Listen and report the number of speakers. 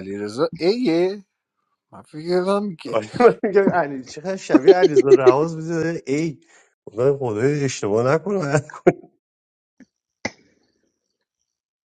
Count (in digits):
2